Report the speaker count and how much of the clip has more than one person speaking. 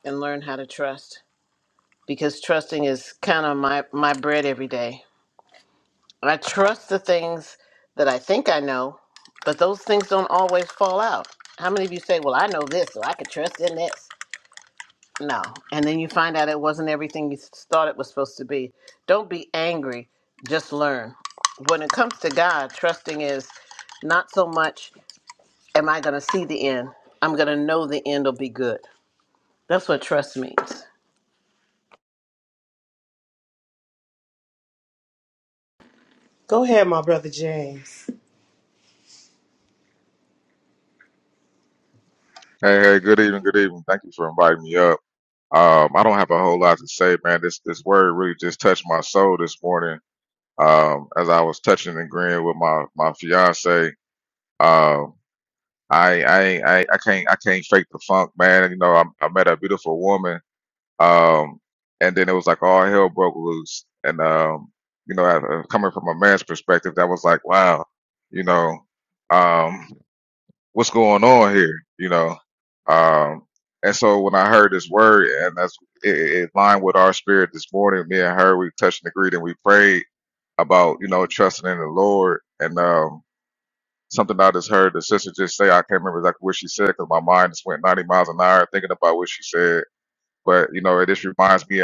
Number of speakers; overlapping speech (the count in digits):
3, no overlap